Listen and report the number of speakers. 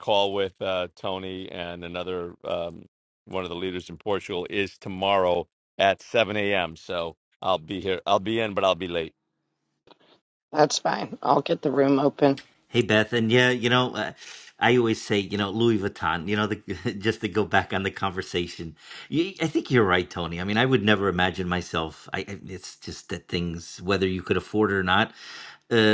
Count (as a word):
three